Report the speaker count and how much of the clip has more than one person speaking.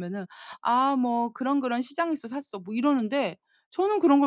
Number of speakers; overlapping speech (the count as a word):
one, no overlap